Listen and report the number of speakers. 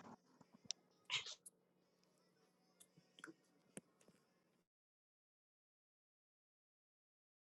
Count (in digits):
0